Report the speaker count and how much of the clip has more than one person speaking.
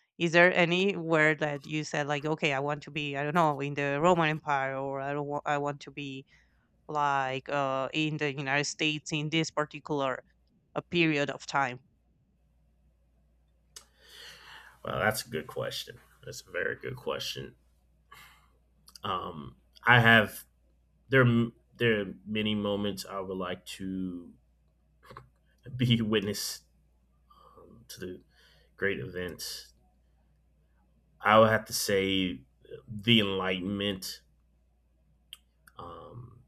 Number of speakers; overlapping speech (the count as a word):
two, no overlap